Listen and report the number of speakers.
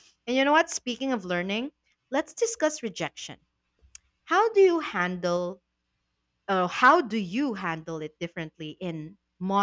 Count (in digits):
1